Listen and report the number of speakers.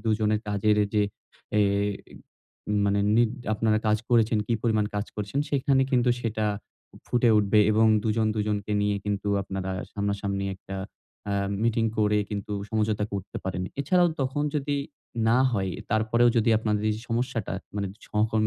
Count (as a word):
one